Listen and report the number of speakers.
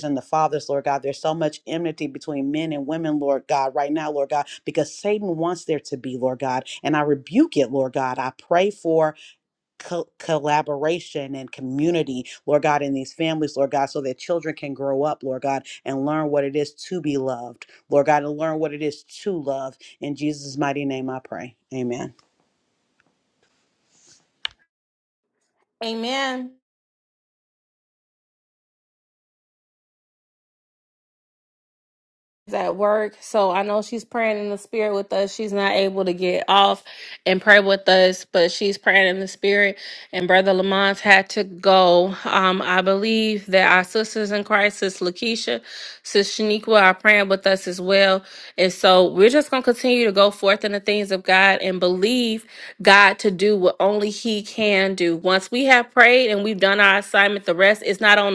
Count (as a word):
two